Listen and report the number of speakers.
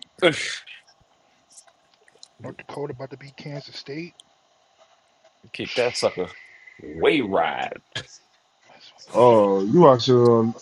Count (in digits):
3